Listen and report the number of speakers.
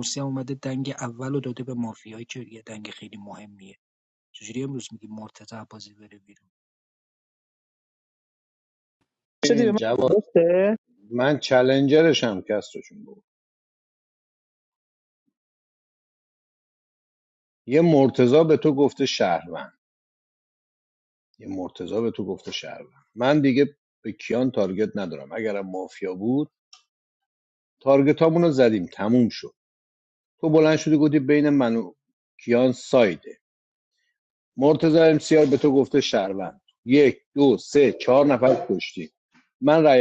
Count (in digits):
3